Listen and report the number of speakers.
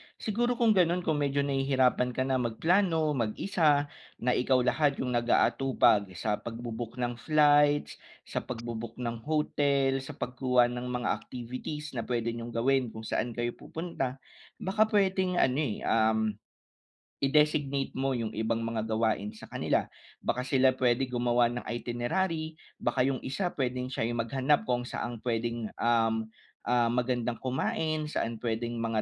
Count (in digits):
1